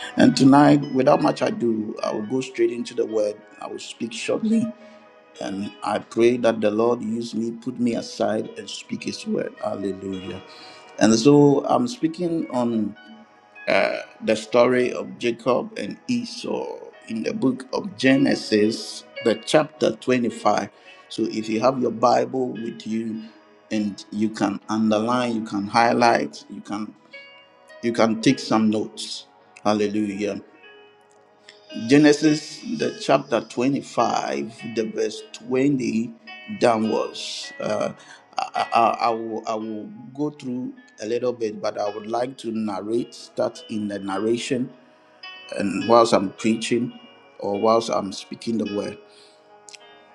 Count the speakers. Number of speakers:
1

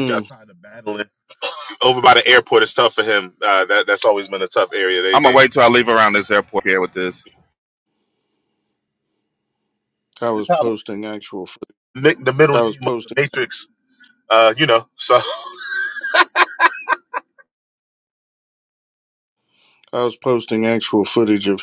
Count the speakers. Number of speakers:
3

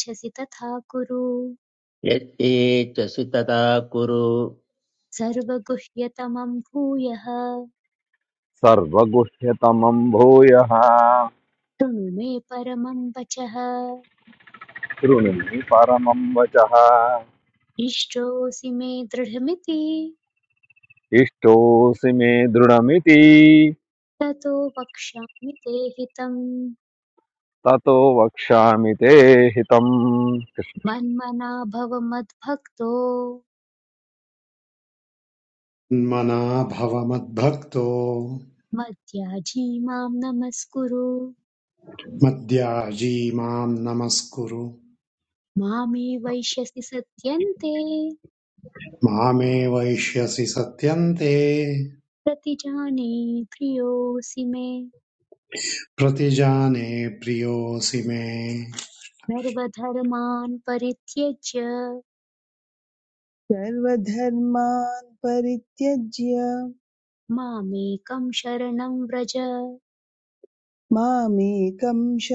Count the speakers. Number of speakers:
5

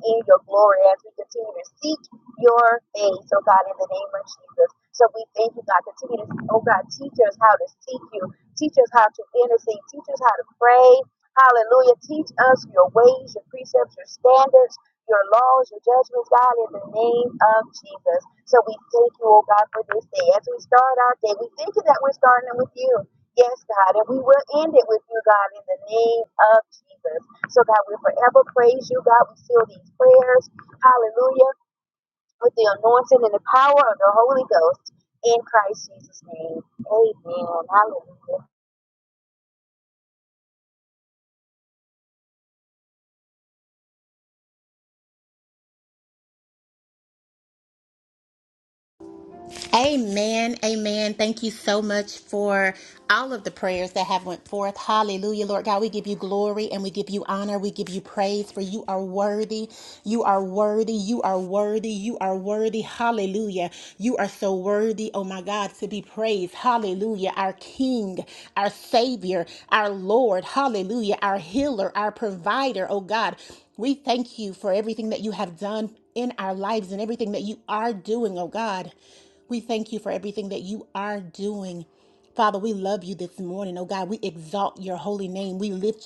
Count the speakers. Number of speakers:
2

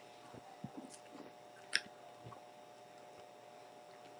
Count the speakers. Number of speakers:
0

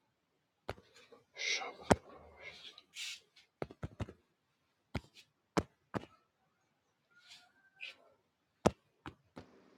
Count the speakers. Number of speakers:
0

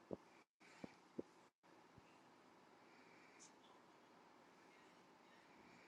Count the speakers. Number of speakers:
0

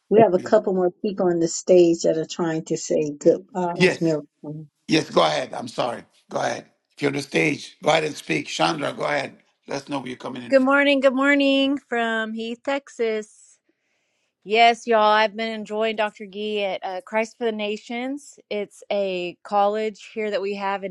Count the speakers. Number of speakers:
3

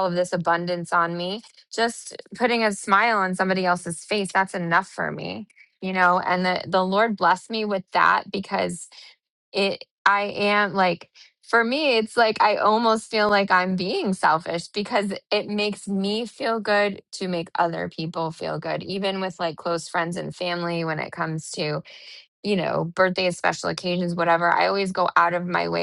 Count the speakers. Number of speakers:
1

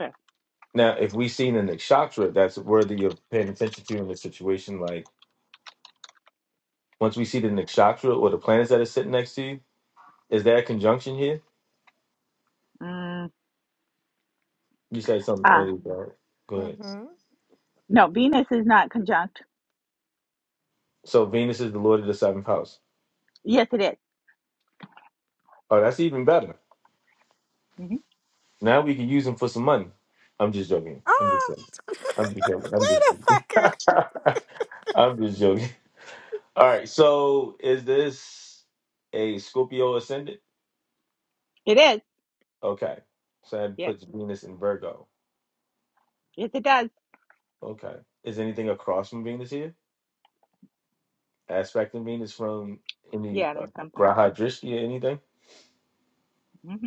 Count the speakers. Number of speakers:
3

